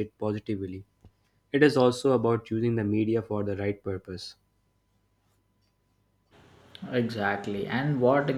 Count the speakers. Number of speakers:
2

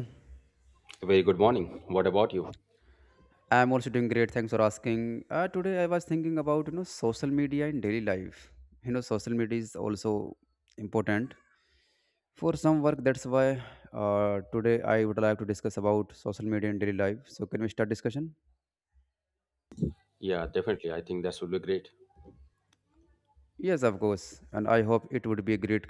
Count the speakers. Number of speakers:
2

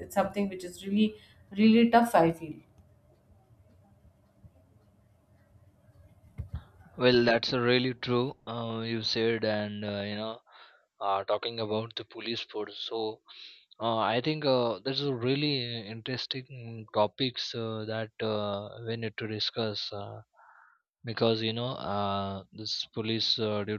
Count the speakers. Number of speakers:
2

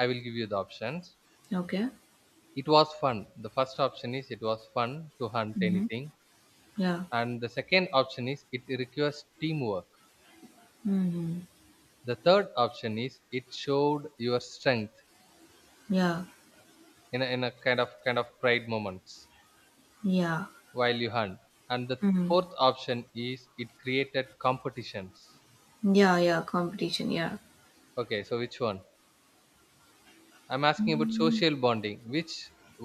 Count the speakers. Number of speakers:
2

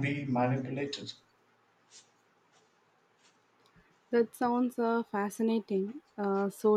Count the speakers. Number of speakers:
2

